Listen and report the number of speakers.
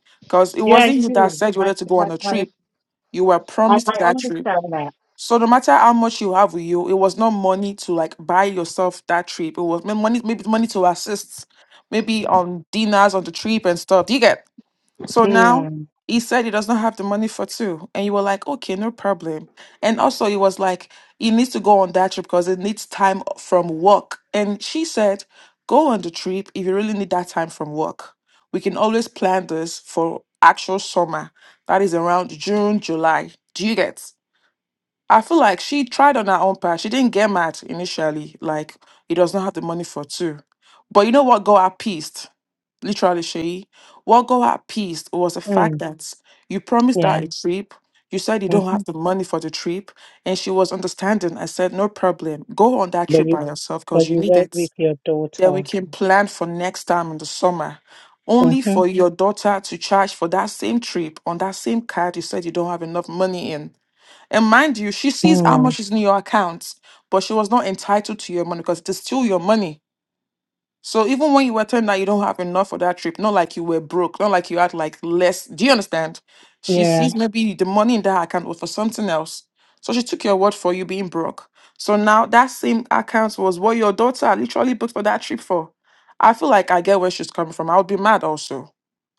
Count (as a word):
two